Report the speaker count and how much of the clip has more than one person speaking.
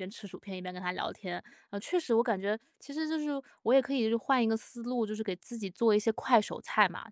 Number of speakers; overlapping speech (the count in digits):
1, no overlap